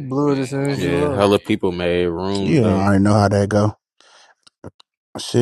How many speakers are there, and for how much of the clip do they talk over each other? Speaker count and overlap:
3, about 18%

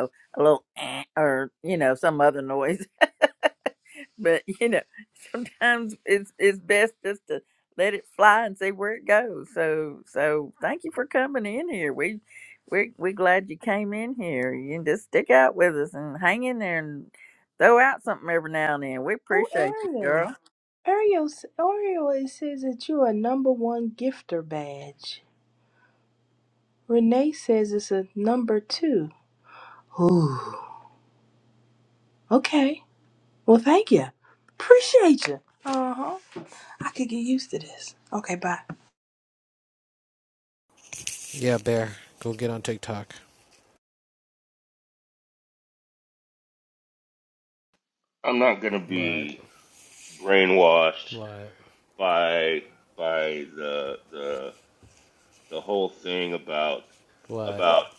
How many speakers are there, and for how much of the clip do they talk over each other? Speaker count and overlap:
4, about 3%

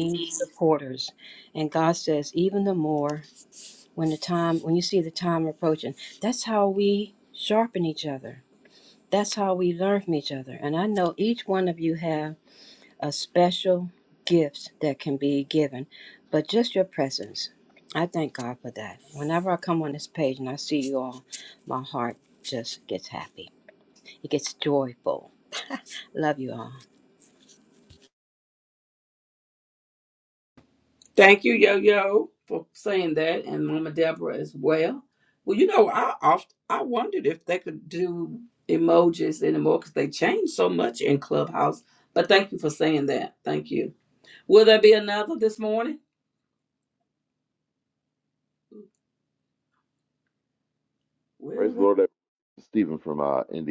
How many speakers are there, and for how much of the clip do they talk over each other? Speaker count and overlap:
3, about 1%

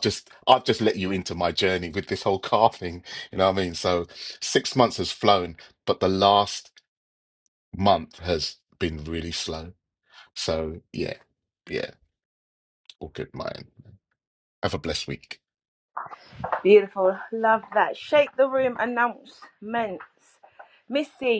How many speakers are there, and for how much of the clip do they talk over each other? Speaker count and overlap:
2, no overlap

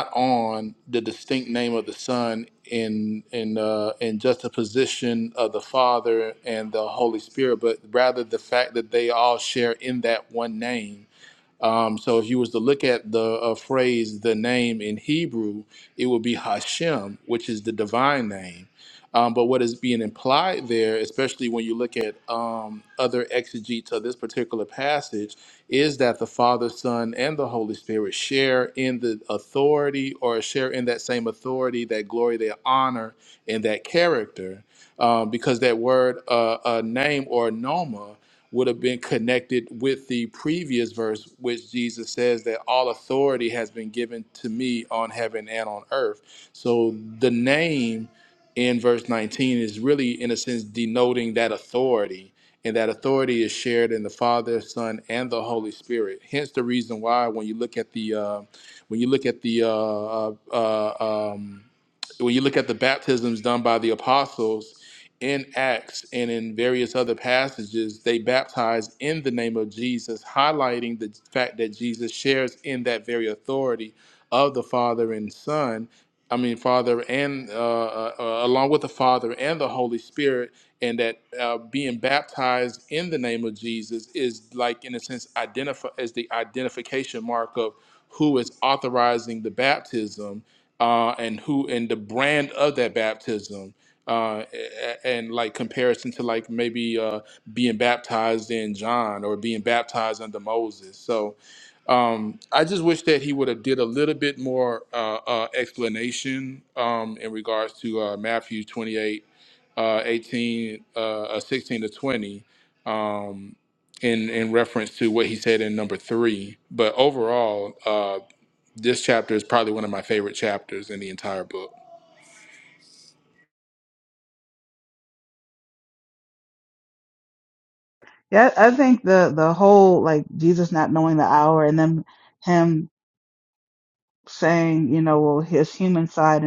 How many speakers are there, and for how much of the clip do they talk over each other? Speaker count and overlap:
2, no overlap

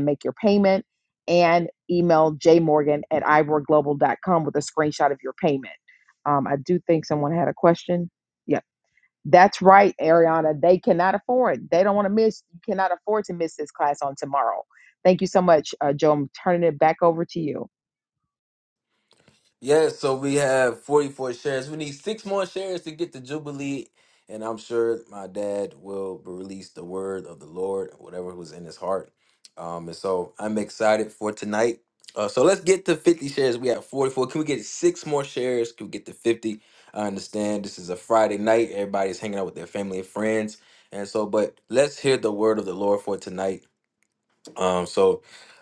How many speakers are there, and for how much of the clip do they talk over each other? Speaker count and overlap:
2, no overlap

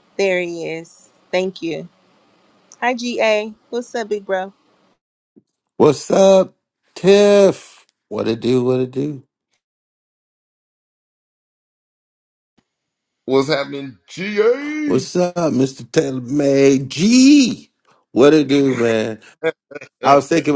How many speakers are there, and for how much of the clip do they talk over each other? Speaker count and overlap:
3, about 1%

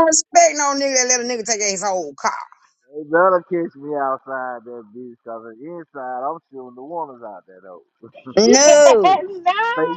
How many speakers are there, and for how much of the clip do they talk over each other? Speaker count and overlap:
3, about 10%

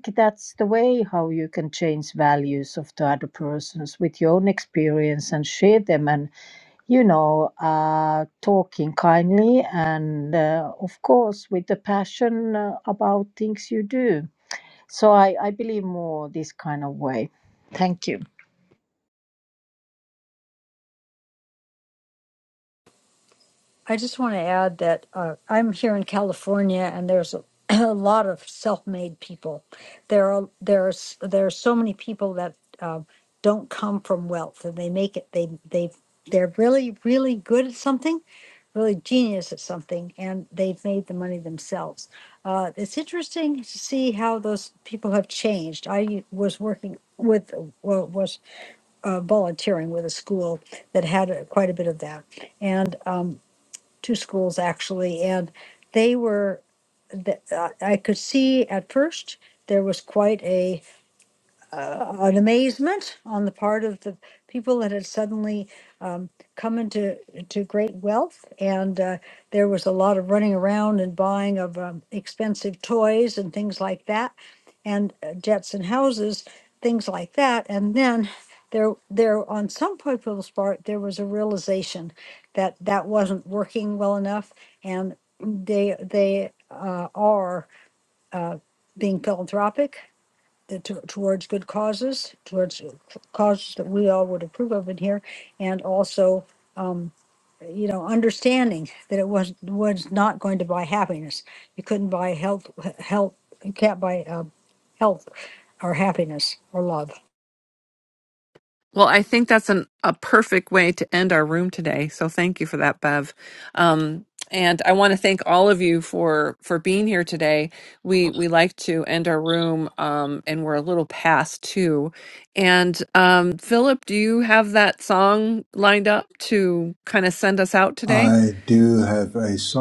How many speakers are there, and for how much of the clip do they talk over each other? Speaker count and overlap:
4, under 1%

